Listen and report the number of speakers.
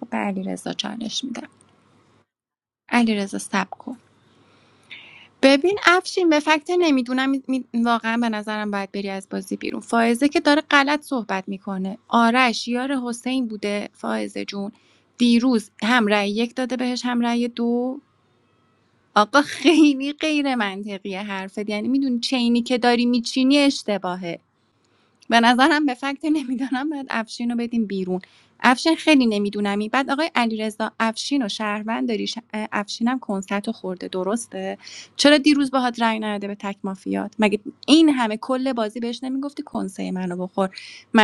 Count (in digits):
1